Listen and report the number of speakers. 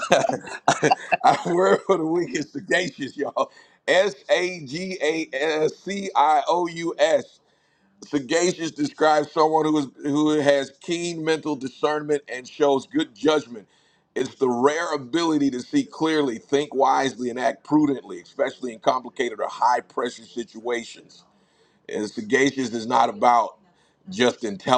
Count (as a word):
one